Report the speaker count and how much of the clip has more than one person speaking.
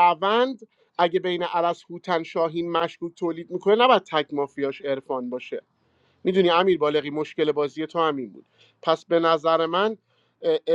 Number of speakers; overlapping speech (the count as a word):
one, no overlap